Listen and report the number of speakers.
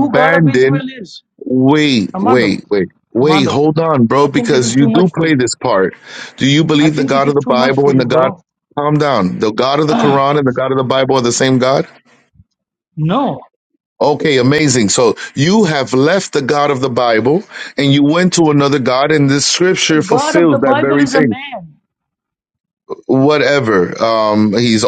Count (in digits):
2